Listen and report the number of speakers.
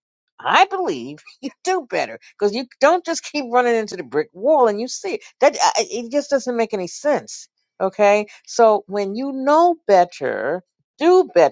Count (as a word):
one